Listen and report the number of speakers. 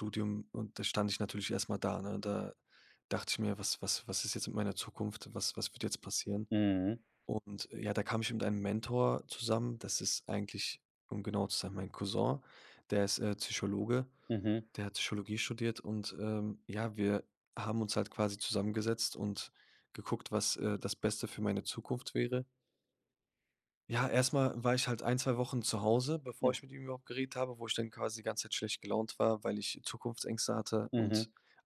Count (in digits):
2